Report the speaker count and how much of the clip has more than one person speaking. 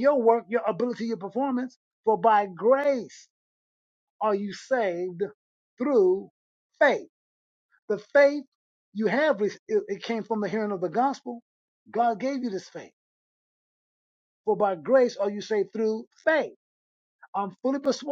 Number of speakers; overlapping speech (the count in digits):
1, no overlap